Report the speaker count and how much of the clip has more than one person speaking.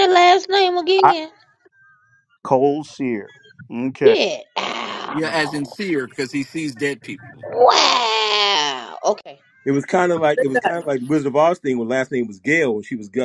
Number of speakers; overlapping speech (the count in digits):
4, about 2%